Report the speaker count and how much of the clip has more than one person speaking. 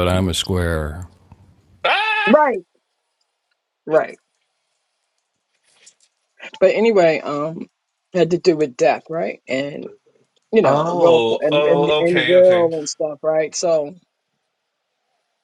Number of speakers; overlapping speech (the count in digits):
3, about 14%